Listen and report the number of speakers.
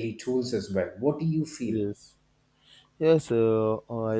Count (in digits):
2